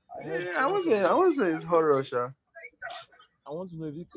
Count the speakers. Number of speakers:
2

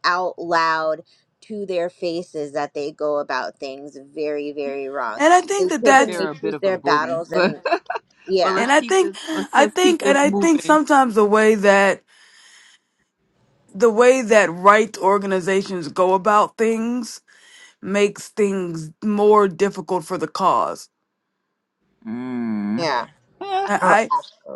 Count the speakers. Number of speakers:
3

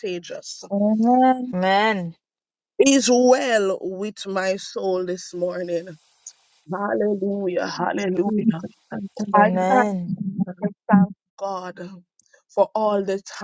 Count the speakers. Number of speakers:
3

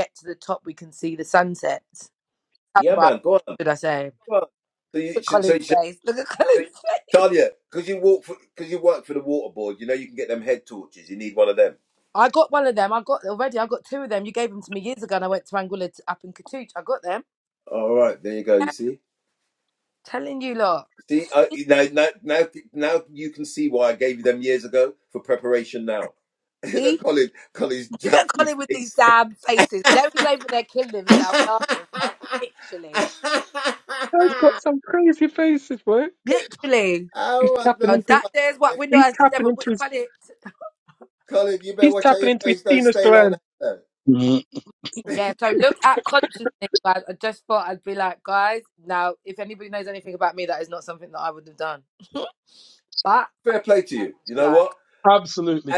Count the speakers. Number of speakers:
4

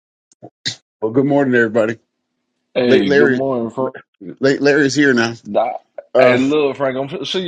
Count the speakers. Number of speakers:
2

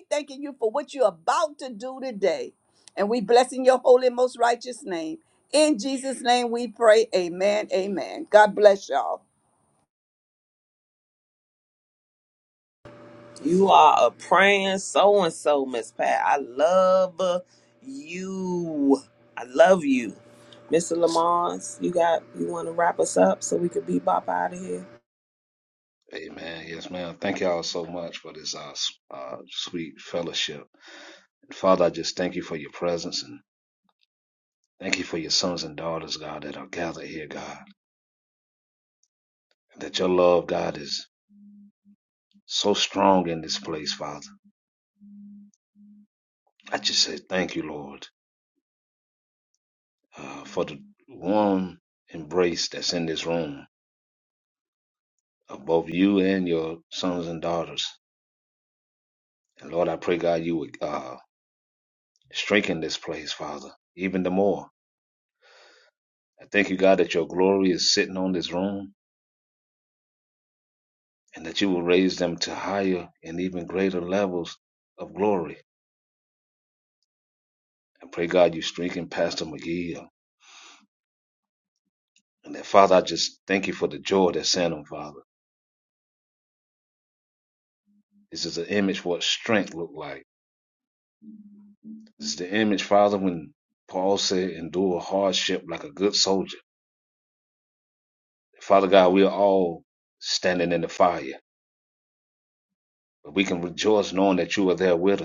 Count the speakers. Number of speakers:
3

